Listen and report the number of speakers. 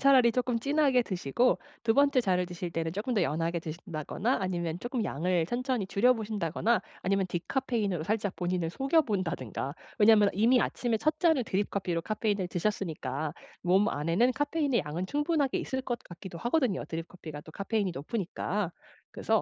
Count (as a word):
one